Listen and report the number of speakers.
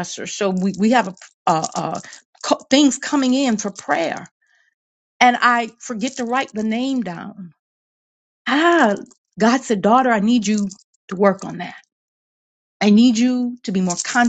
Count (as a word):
one